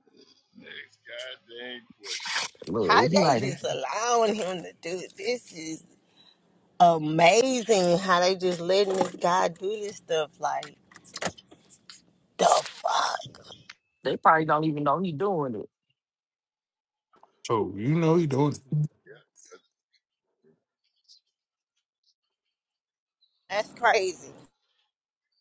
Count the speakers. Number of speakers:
4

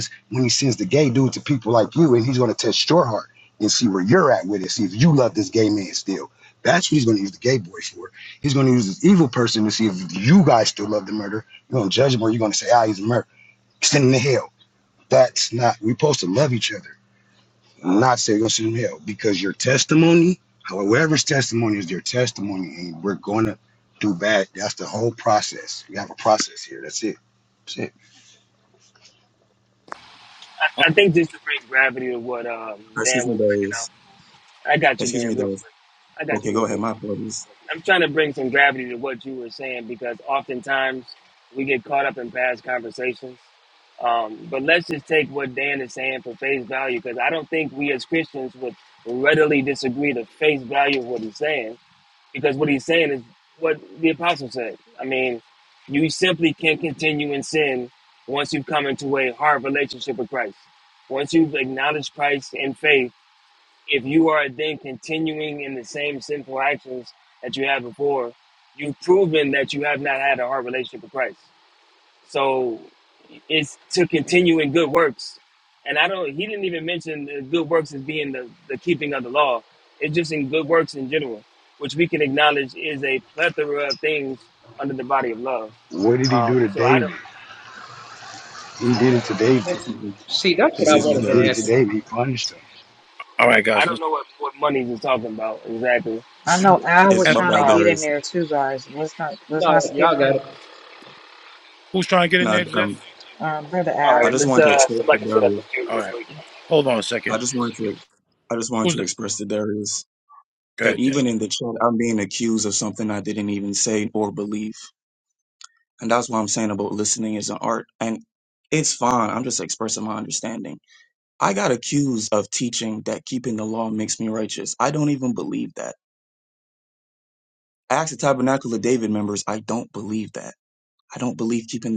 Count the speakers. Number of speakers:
6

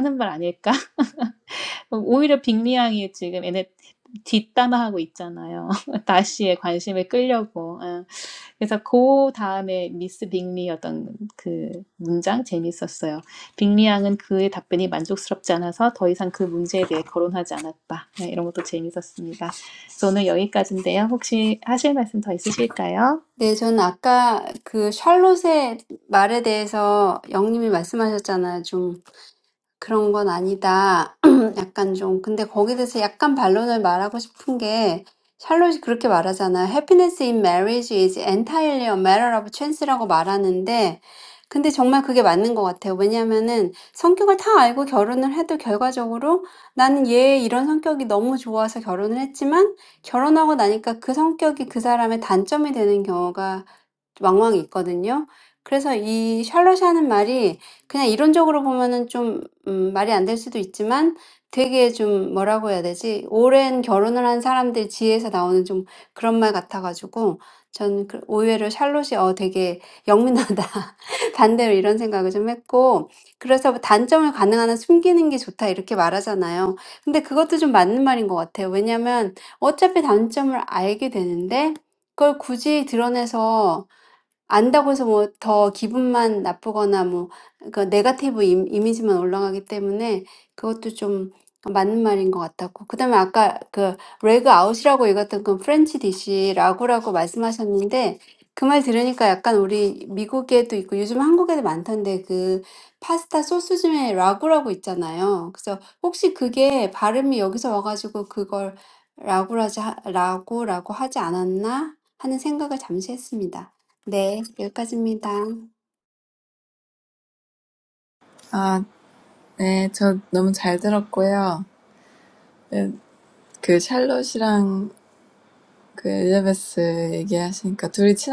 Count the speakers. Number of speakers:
3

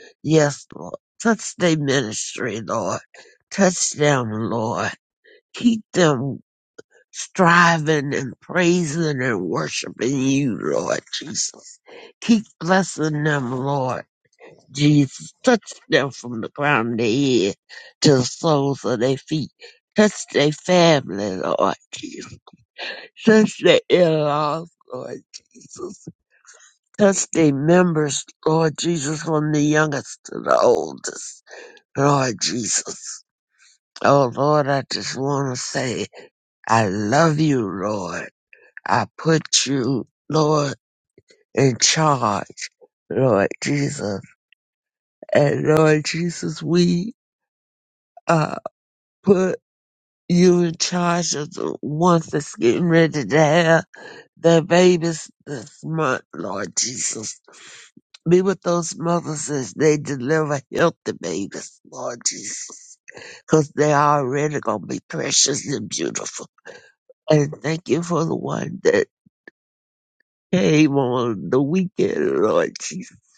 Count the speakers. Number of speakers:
1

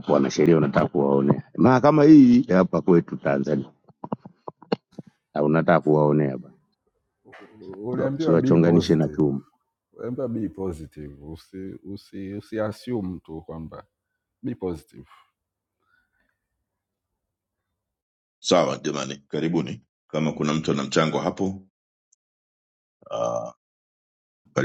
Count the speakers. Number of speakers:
3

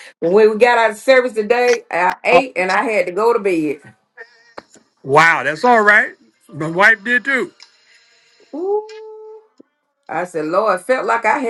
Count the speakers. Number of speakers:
2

